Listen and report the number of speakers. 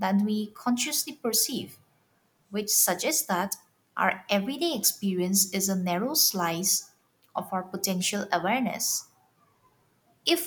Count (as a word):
one